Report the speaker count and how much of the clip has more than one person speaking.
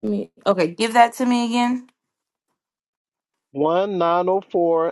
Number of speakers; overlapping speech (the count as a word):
two, no overlap